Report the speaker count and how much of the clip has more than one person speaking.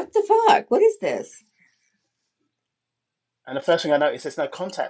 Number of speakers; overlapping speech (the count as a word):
two, no overlap